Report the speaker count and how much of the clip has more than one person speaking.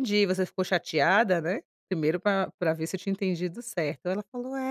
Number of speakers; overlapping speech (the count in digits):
1, no overlap